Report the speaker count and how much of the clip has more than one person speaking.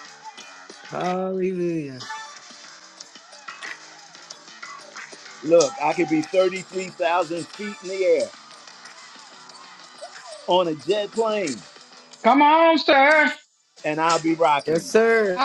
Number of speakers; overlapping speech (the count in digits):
3, about 1%